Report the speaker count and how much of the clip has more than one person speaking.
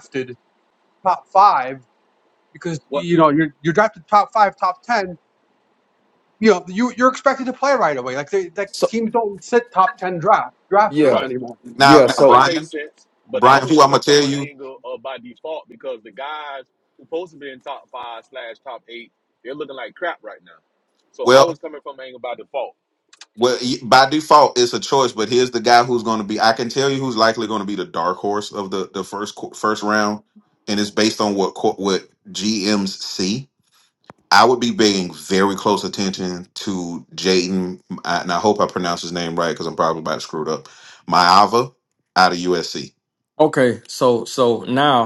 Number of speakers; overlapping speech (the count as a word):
four, about 6%